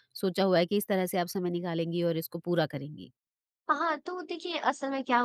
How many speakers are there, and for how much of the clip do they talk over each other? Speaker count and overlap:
2, no overlap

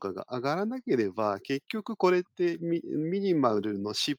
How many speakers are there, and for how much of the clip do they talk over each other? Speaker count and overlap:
1, no overlap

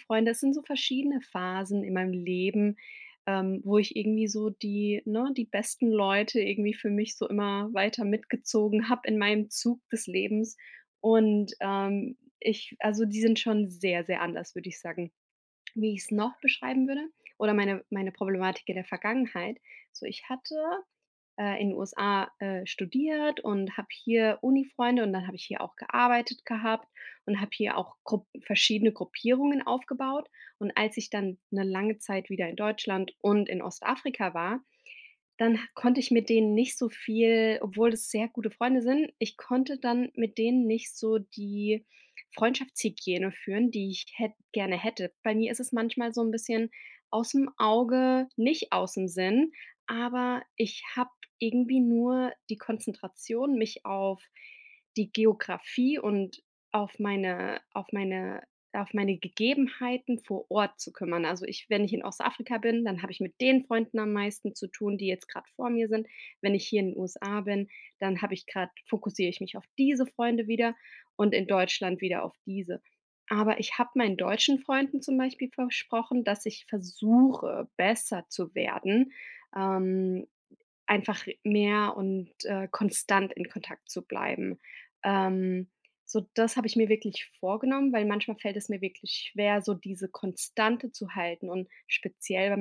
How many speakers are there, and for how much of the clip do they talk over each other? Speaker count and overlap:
1, no overlap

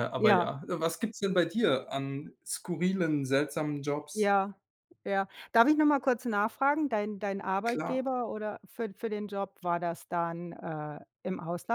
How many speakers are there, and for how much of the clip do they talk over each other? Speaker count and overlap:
2, about 5%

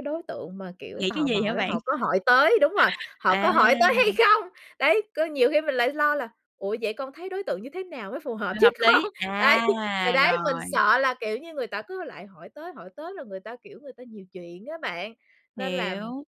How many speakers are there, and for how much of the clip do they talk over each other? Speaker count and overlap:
2, about 24%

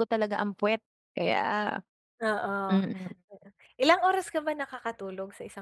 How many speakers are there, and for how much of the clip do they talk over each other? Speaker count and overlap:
2, about 2%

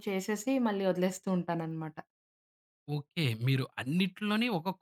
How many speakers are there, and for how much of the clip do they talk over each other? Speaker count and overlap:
2, no overlap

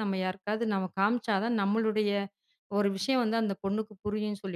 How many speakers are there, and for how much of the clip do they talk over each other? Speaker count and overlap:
1, no overlap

